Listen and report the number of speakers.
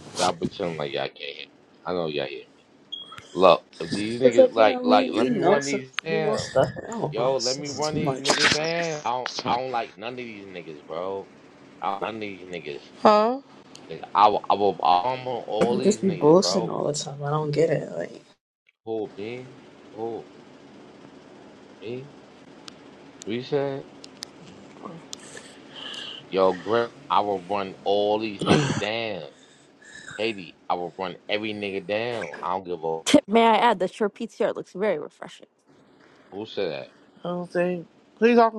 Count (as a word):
four